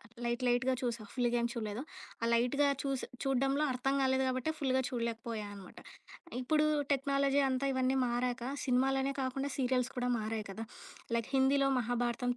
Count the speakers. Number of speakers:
one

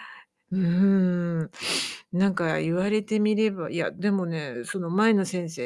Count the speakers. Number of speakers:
one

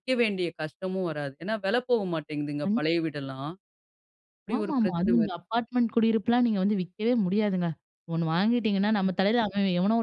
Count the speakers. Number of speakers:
two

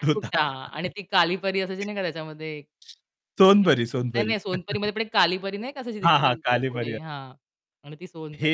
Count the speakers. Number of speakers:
two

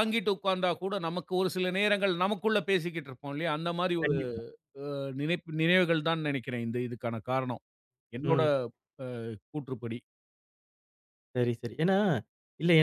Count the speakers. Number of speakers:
two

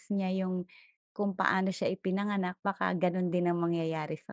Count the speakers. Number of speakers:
one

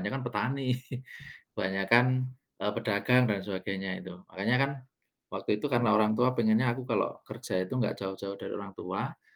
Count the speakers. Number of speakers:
one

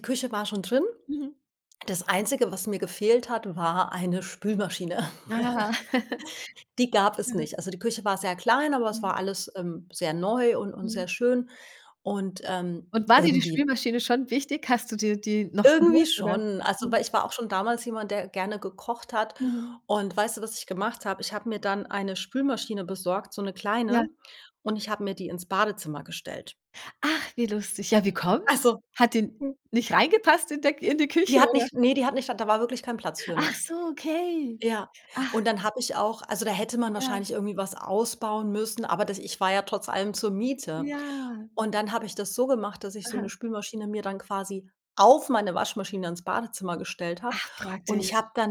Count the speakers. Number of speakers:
two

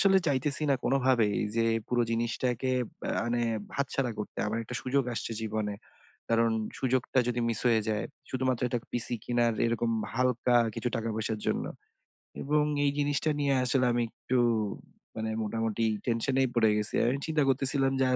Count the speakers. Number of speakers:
one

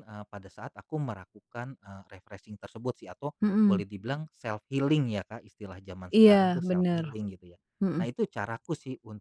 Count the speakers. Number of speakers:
two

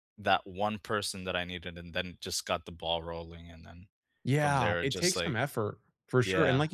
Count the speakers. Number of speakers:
two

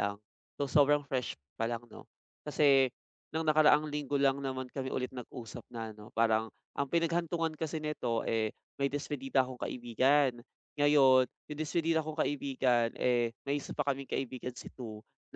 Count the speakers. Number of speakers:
one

